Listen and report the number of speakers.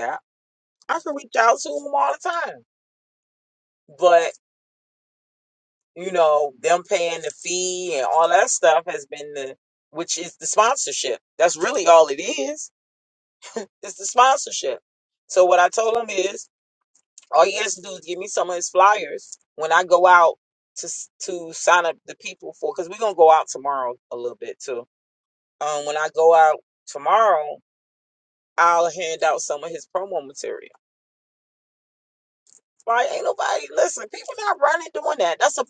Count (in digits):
1